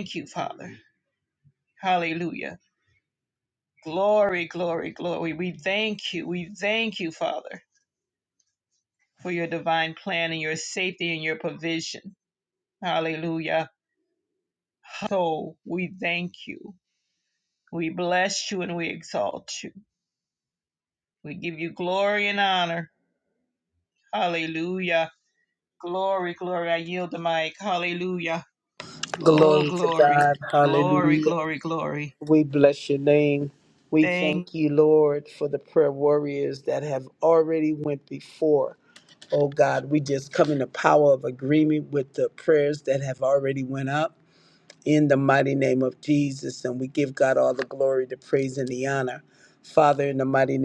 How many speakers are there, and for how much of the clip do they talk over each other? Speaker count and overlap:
two, about 4%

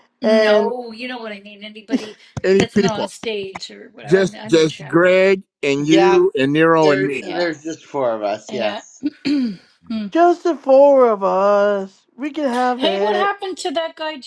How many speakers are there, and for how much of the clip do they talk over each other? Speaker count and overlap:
four, about 26%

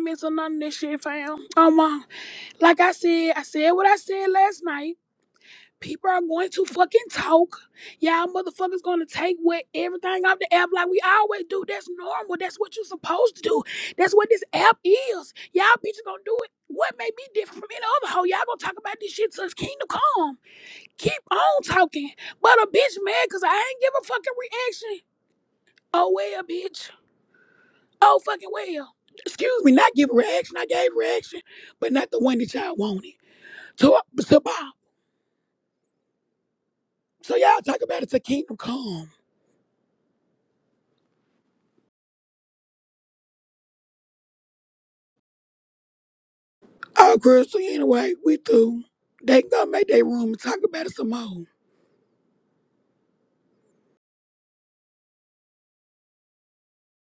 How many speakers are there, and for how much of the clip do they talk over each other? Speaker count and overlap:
one, no overlap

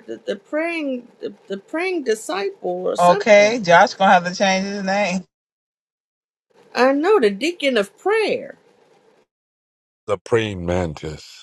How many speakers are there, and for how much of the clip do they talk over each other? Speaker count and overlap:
three, about 5%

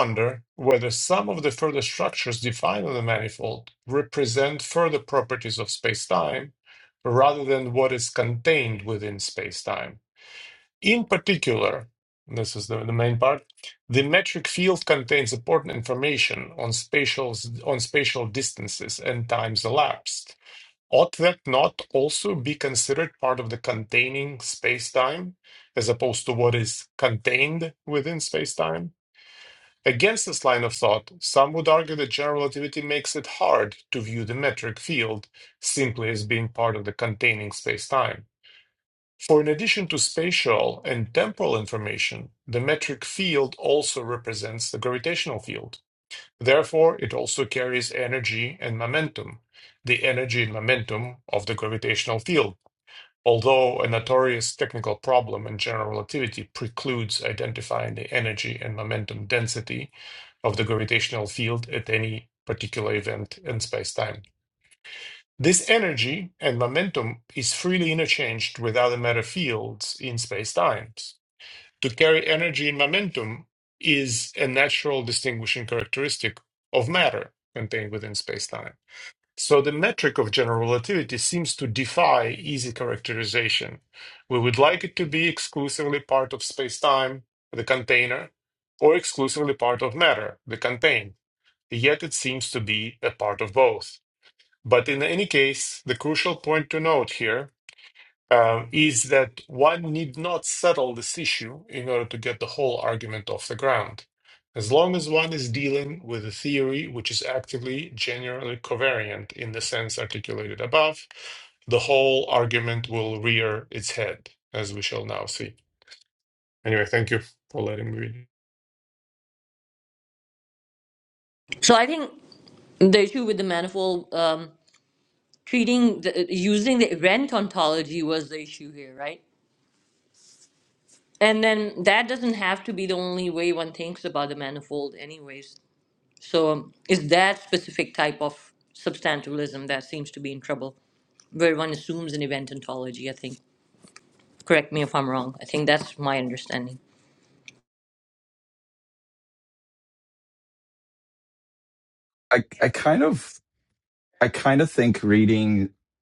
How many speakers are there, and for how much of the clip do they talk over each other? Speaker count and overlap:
three, no overlap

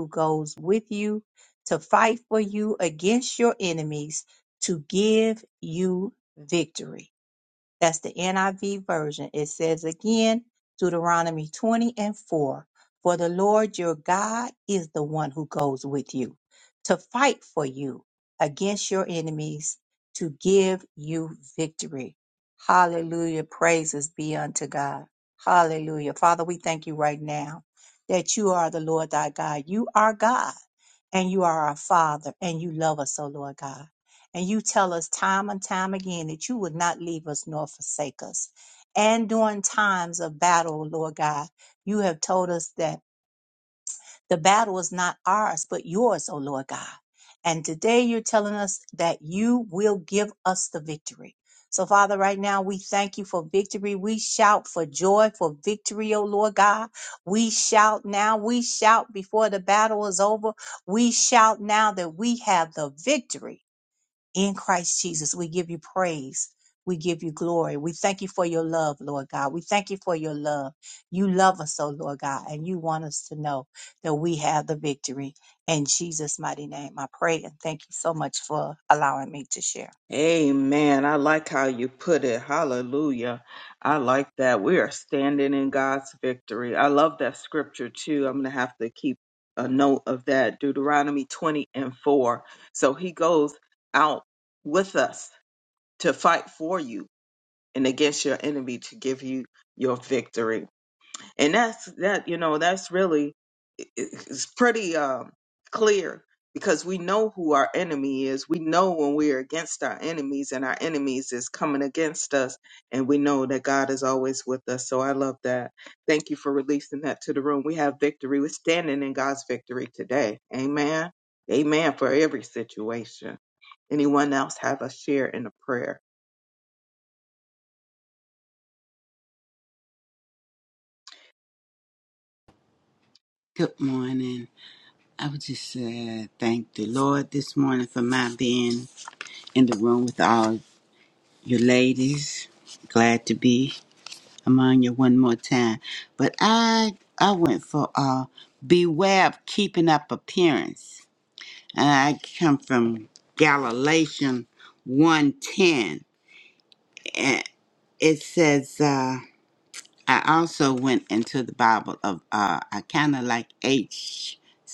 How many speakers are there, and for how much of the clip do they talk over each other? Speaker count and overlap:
three, no overlap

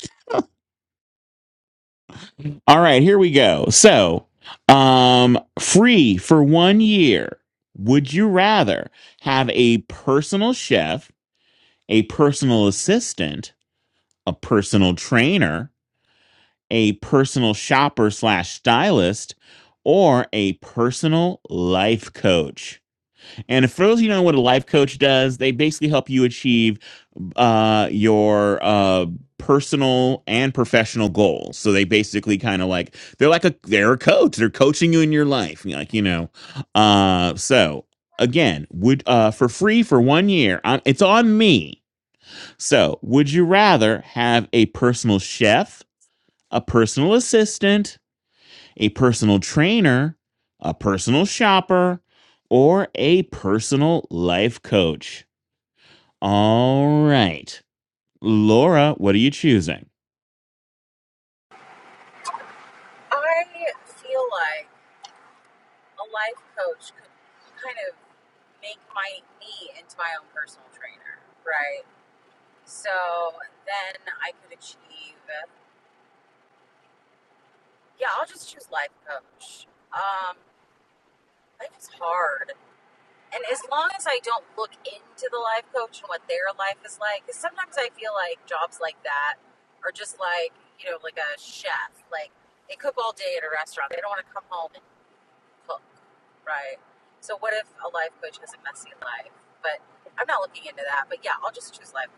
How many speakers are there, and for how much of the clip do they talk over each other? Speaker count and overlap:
two, no overlap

